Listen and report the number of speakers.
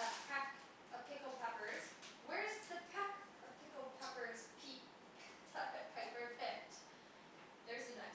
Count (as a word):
one